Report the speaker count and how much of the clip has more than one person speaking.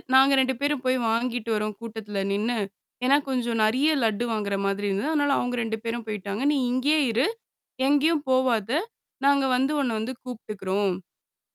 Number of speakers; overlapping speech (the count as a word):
one, no overlap